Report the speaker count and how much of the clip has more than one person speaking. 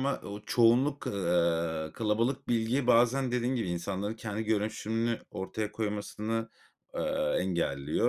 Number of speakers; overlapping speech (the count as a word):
one, no overlap